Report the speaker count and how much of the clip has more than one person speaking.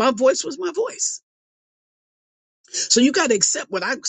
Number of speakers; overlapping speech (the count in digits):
1, no overlap